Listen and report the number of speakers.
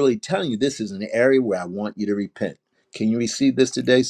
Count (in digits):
1